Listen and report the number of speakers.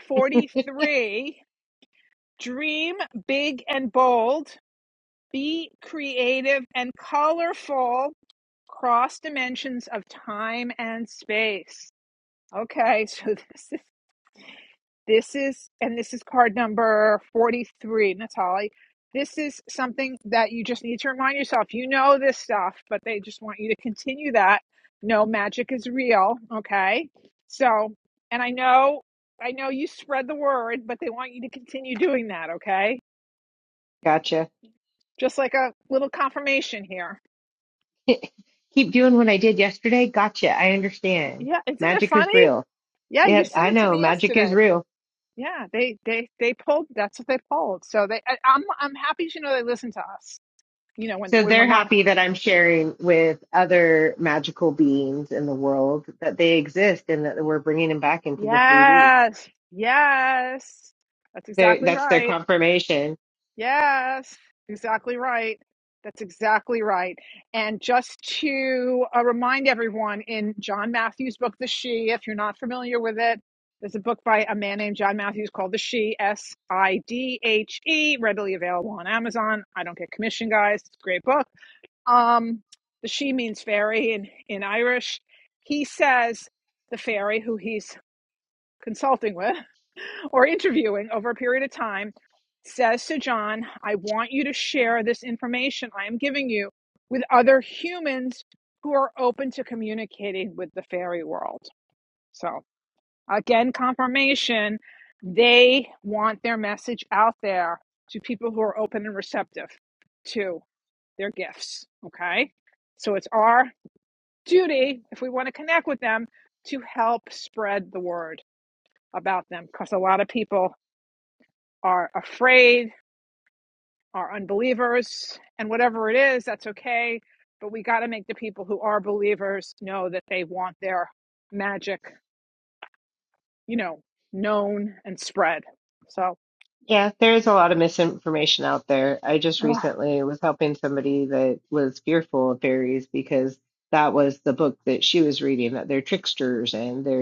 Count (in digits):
2